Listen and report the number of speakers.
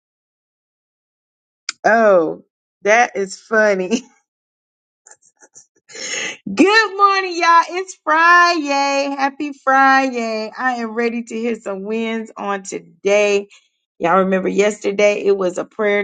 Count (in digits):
1